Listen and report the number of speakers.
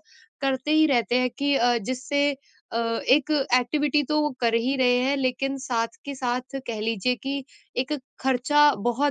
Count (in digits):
1